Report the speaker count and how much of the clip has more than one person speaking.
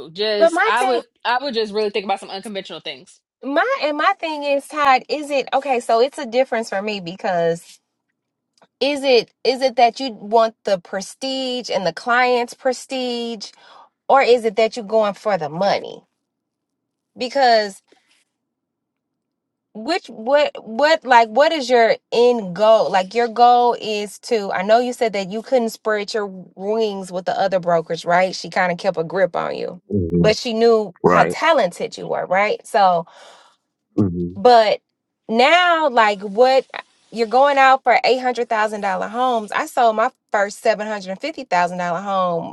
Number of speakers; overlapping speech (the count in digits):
3, about 1%